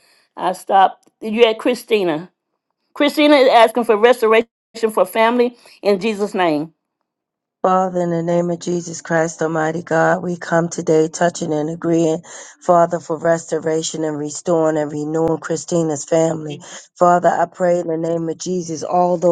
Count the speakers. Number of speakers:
2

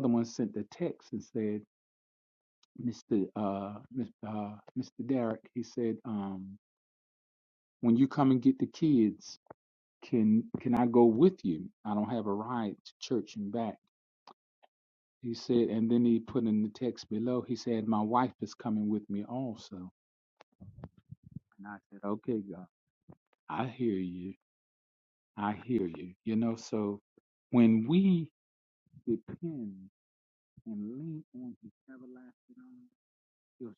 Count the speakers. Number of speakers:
1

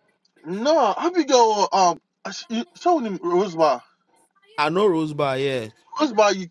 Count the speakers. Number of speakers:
2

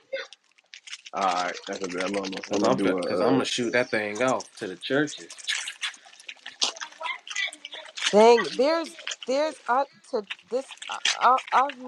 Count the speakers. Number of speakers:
3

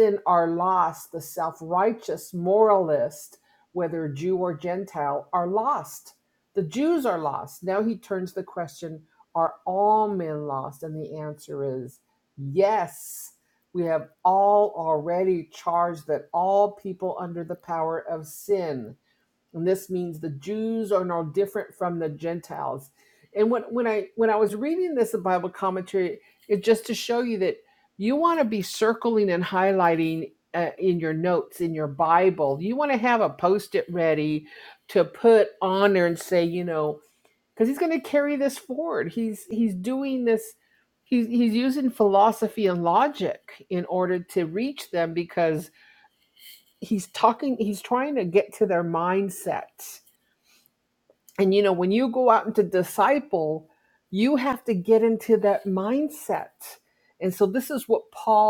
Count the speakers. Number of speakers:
1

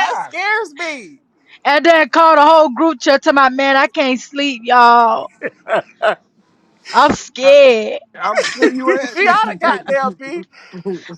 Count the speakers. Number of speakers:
3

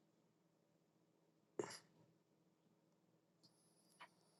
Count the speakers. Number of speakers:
0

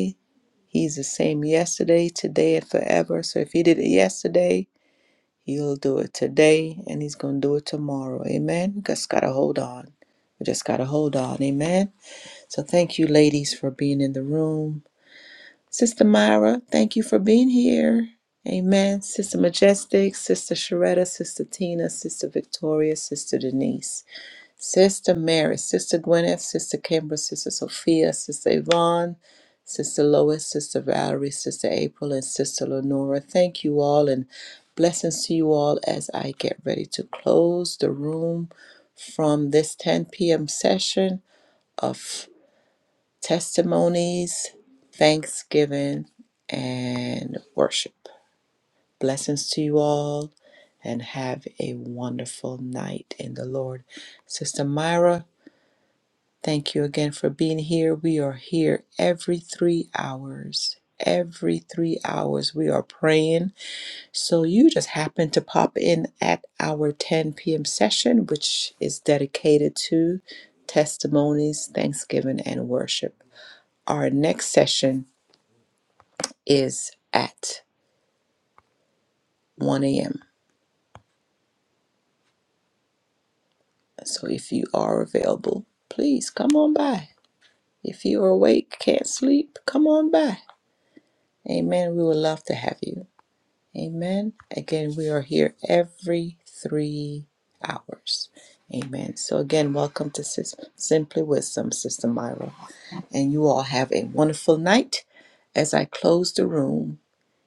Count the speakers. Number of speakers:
1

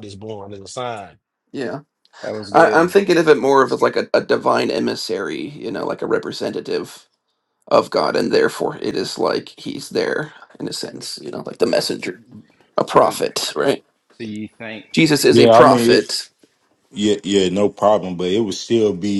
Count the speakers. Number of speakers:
4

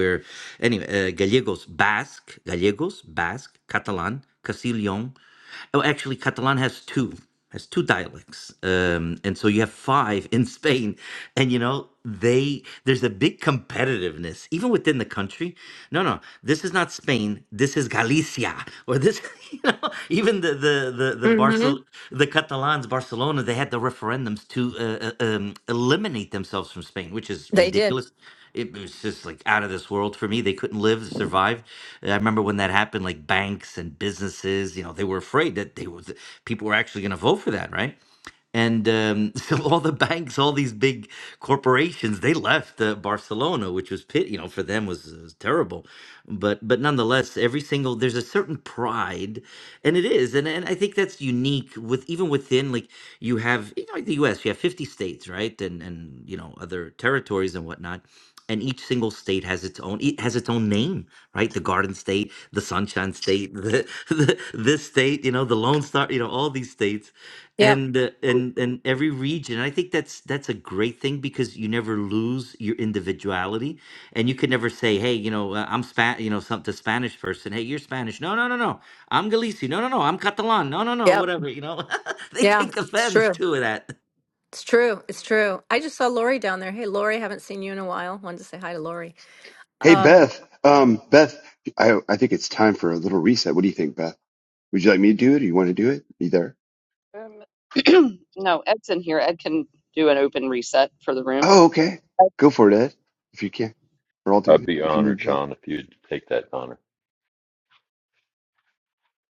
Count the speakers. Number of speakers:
5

